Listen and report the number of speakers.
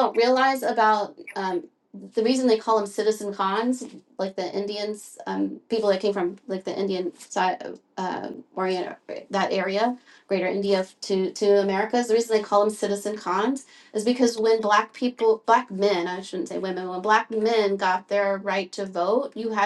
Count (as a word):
one